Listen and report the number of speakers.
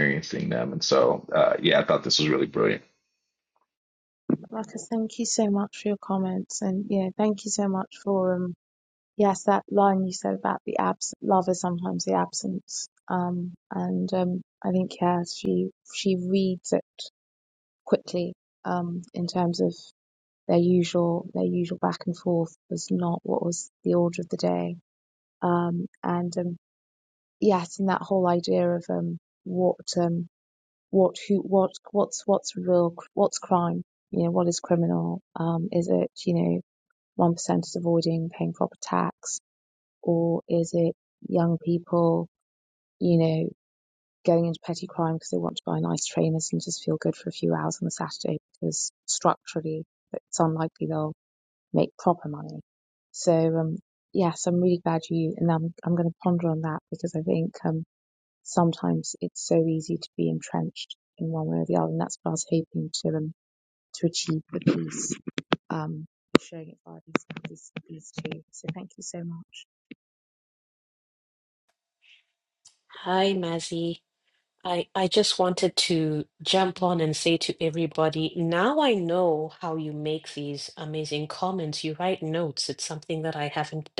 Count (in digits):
3